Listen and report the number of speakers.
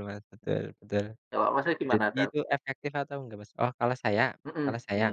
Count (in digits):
2